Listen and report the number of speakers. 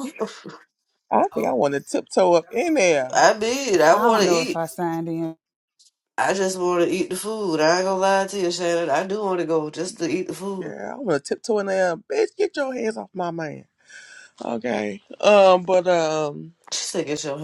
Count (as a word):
three